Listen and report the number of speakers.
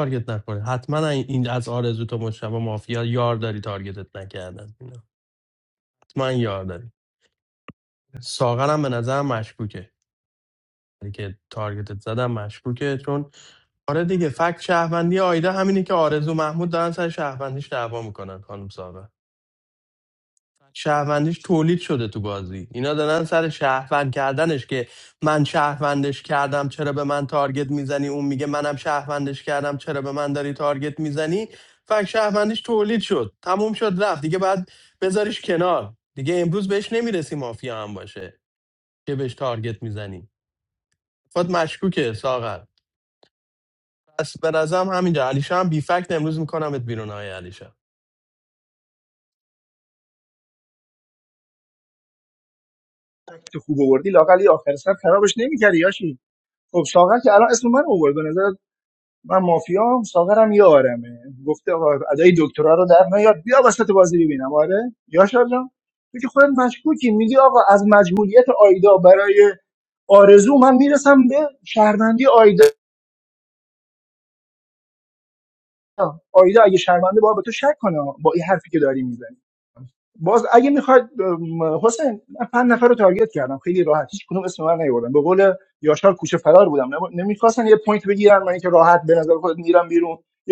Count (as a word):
two